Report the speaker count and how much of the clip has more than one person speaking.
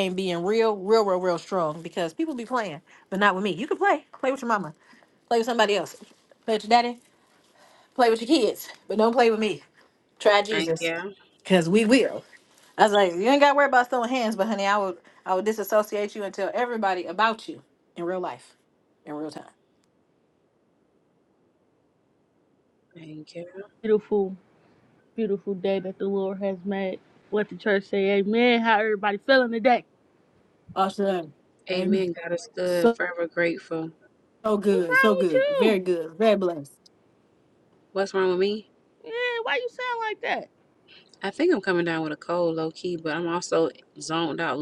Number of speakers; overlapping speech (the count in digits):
3, about 4%